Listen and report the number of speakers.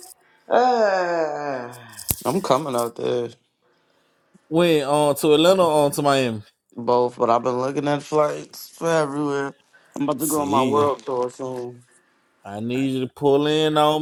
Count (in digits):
3